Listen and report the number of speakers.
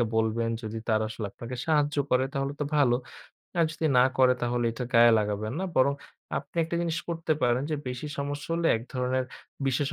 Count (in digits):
1